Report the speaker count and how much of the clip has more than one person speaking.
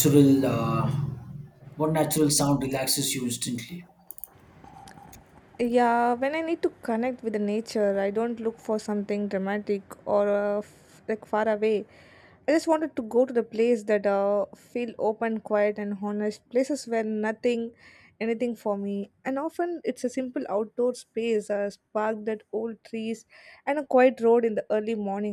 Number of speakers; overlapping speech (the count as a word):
two, no overlap